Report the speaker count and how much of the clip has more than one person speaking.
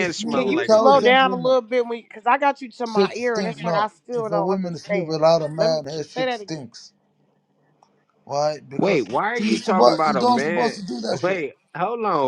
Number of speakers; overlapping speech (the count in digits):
3, about 51%